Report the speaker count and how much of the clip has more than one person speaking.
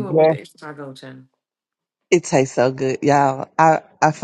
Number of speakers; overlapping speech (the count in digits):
2, about 8%